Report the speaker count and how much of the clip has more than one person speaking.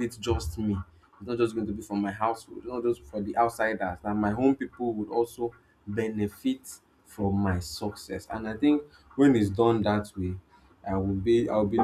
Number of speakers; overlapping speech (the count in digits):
1, no overlap